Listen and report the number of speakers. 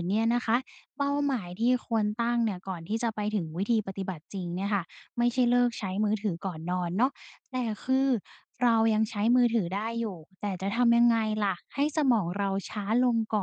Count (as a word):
one